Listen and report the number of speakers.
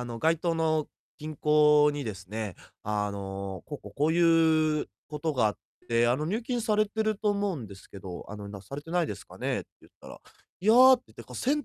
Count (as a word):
one